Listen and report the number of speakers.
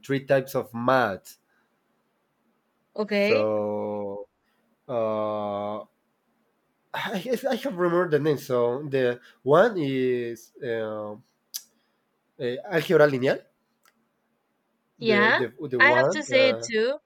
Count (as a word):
two